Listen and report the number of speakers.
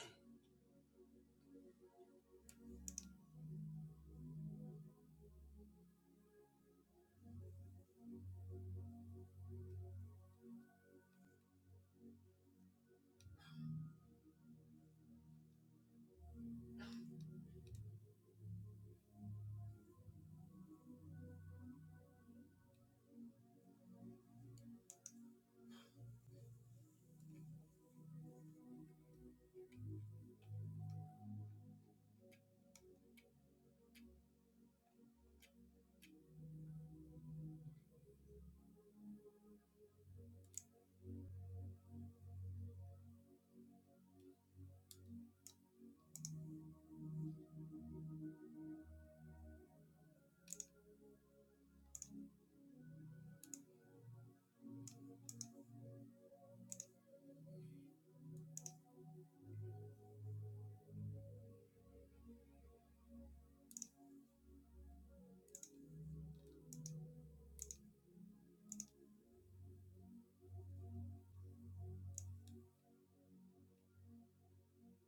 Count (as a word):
zero